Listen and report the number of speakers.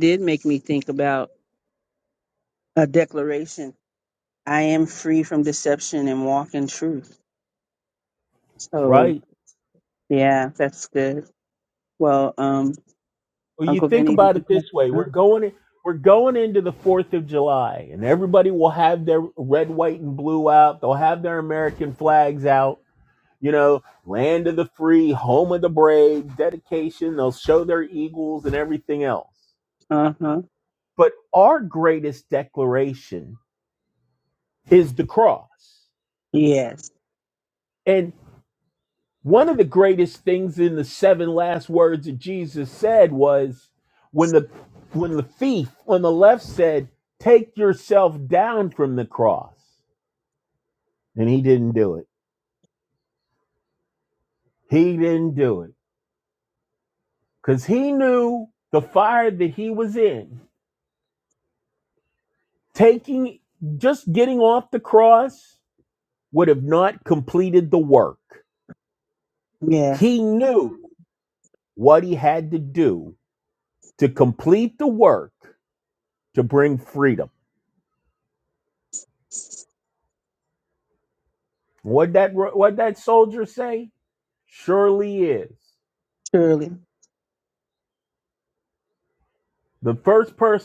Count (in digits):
2